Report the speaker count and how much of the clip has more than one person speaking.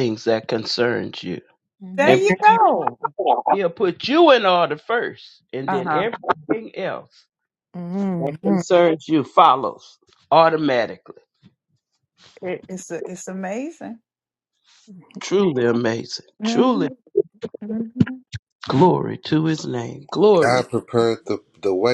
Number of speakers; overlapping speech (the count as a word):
four, about 7%